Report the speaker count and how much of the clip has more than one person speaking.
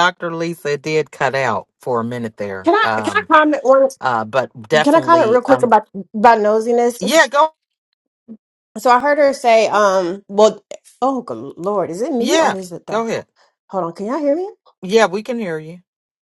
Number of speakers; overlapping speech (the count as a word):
two, about 13%